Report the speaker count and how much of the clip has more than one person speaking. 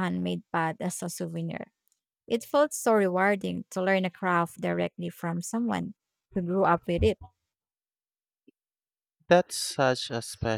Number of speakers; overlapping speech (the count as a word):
two, no overlap